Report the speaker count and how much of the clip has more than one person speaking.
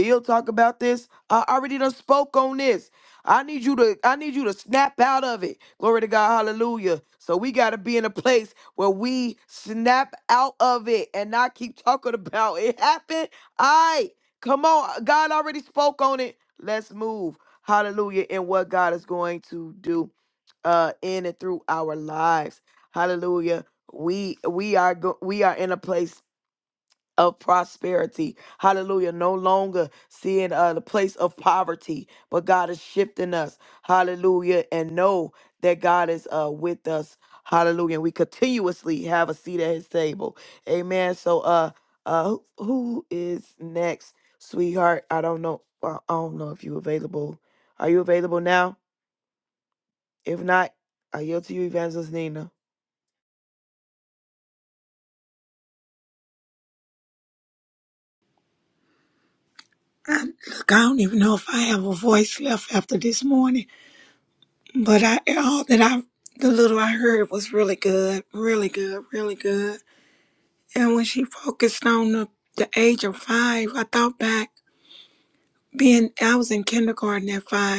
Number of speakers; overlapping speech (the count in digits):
2, no overlap